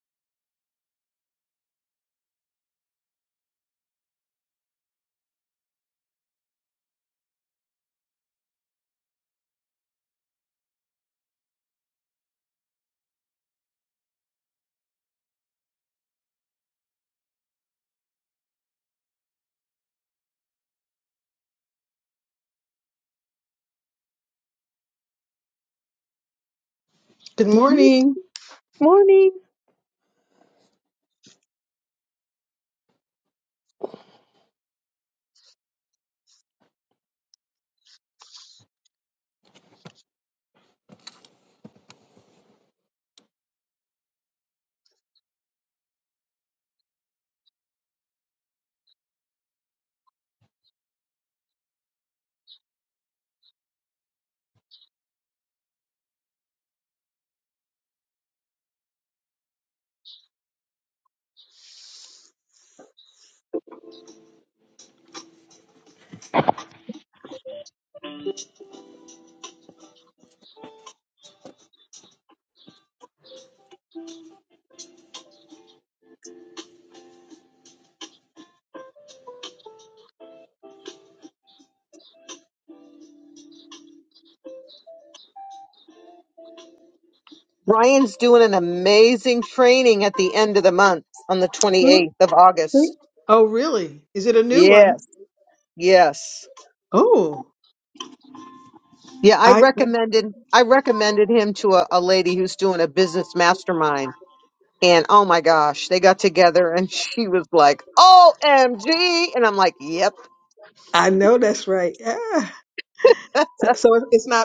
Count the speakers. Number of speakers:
2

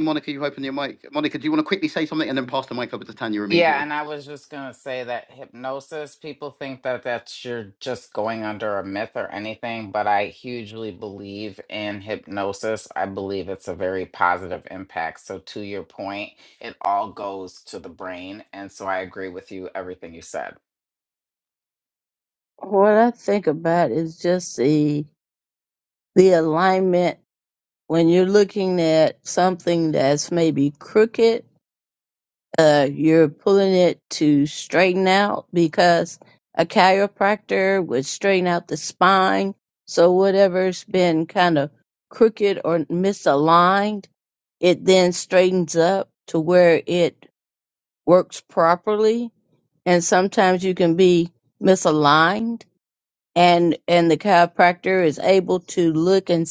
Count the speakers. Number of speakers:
3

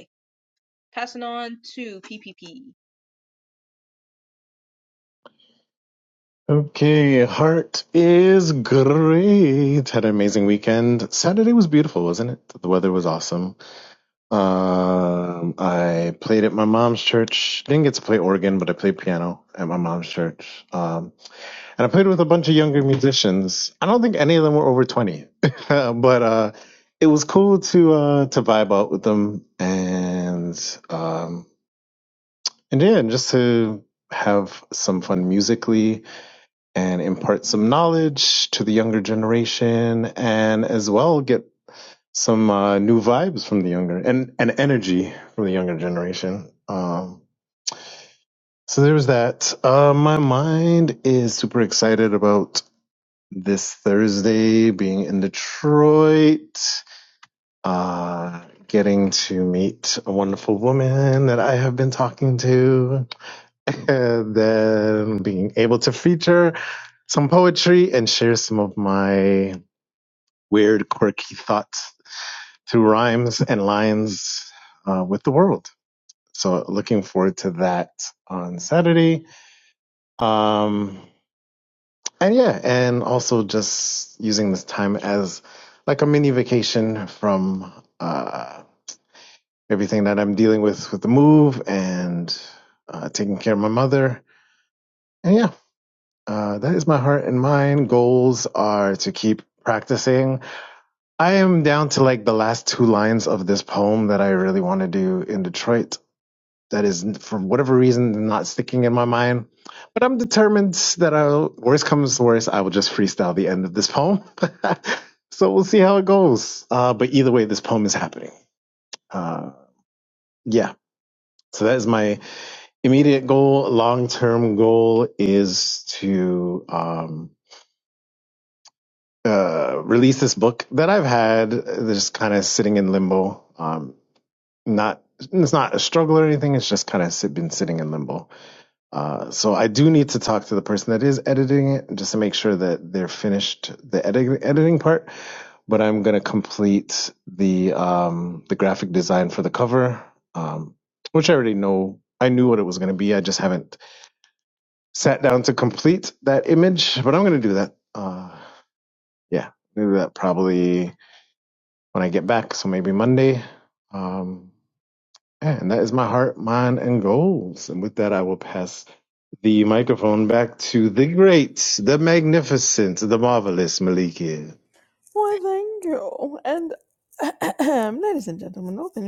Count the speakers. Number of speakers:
3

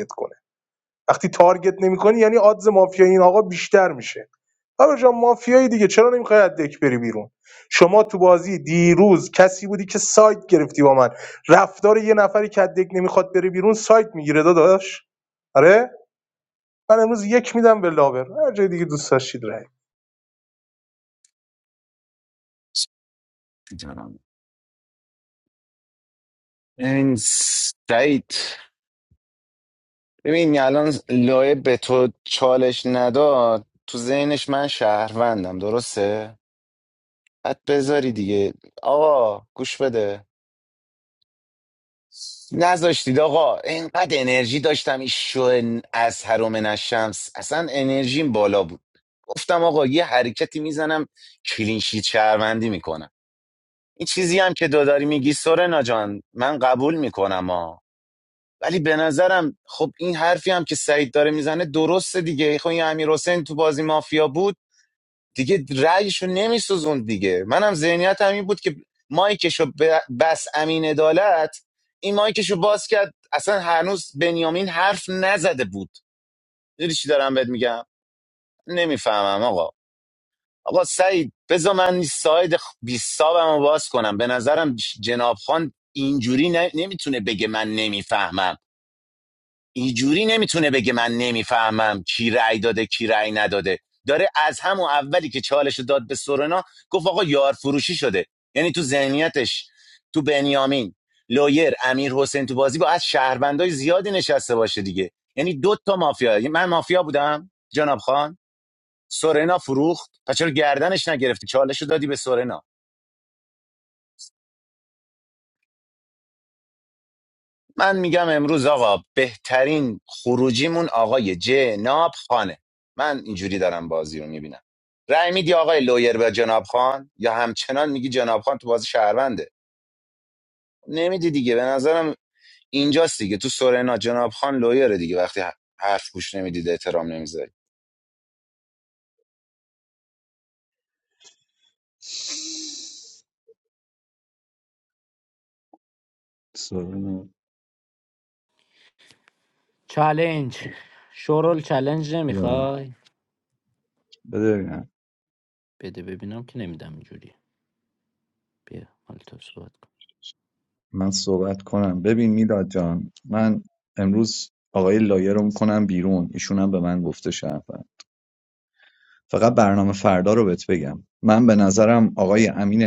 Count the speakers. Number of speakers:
4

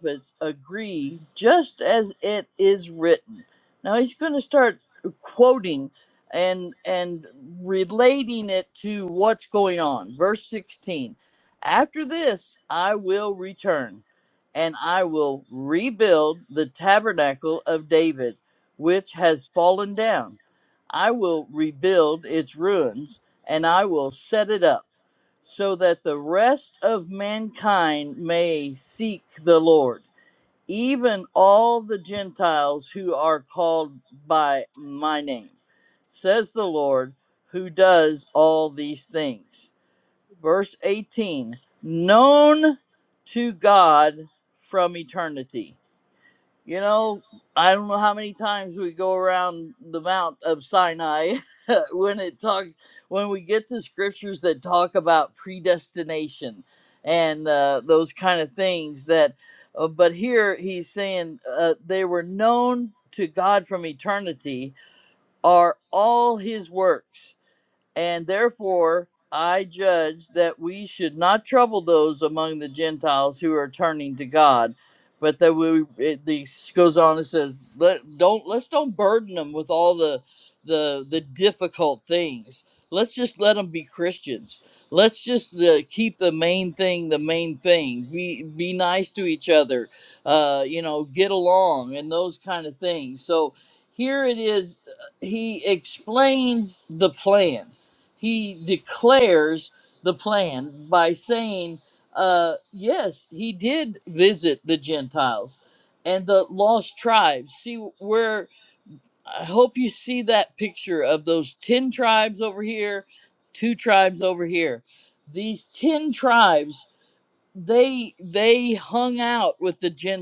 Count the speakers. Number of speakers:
1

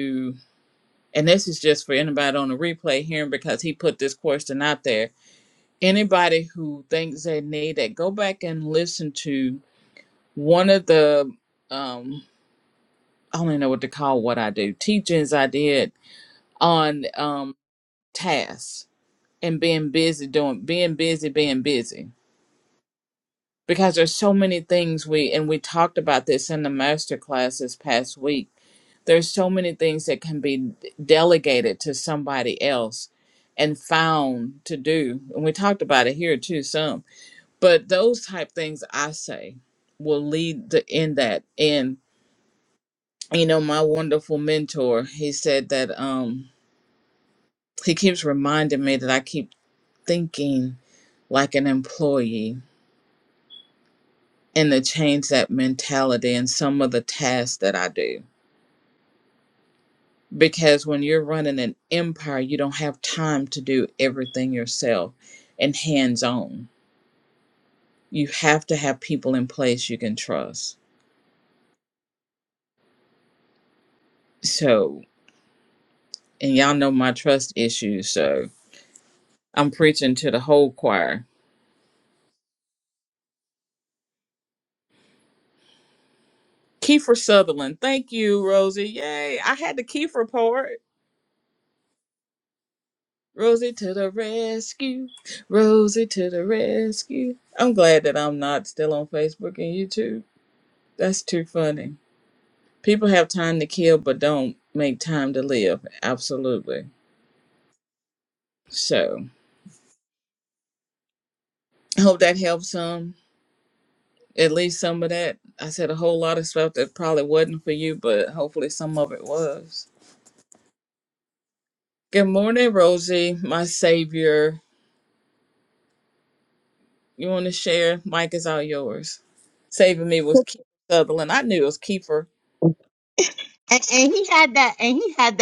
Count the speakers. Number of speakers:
2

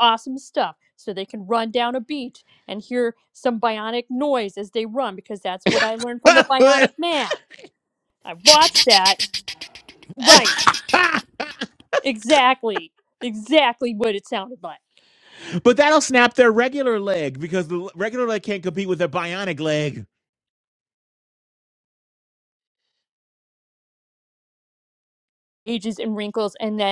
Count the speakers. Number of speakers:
2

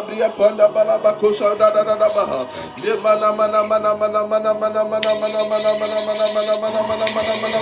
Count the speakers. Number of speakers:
2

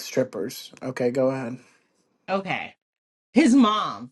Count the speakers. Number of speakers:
2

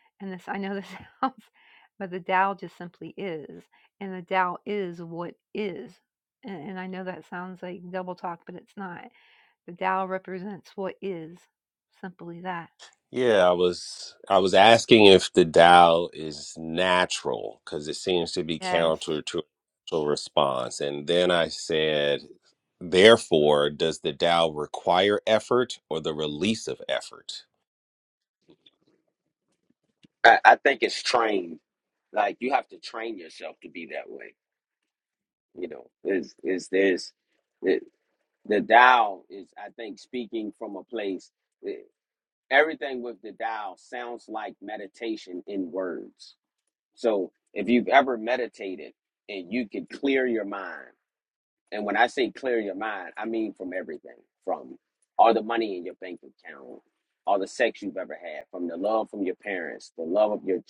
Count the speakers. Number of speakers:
3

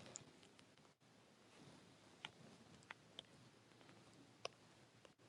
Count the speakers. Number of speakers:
0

